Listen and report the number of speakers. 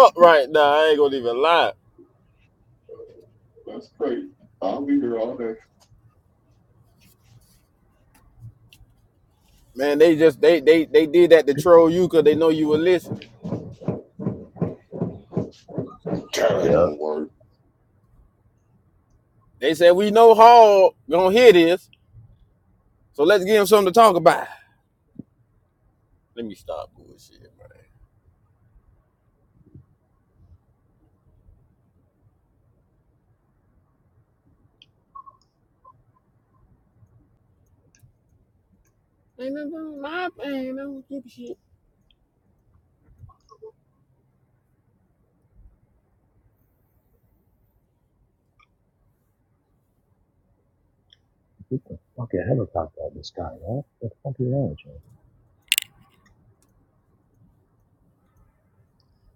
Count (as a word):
three